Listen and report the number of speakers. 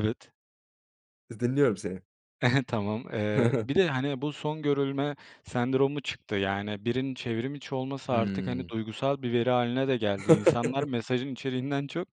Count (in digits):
2